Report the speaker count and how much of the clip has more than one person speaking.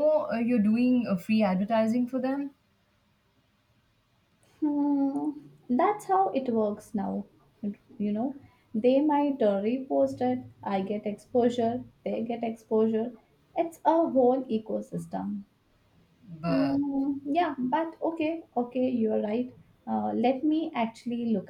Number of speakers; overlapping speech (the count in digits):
2, about 1%